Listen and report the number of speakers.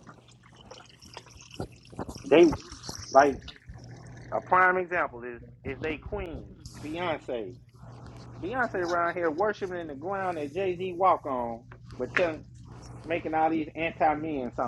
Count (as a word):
one